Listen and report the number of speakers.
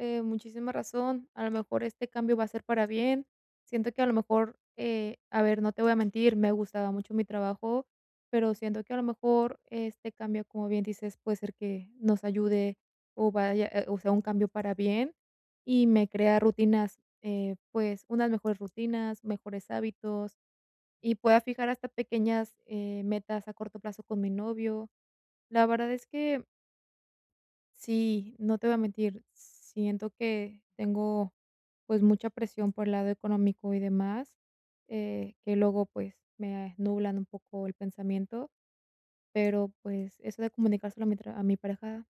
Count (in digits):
1